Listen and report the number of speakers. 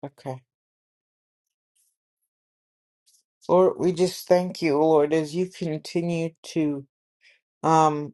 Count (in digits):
1